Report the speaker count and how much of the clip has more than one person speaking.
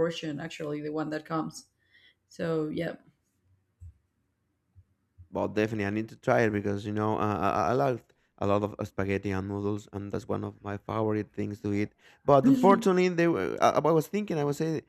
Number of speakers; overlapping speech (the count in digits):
2, no overlap